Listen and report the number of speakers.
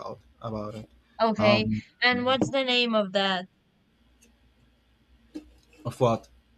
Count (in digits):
2